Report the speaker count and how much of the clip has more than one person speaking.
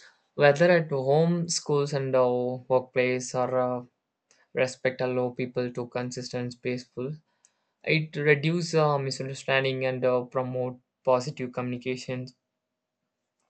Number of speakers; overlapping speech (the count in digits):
1, no overlap